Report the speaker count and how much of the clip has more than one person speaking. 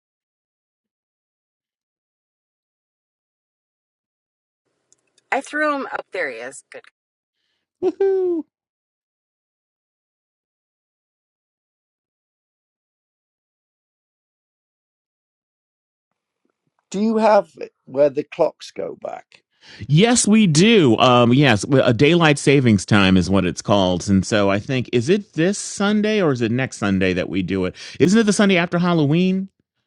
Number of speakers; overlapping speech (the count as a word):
three, no overlap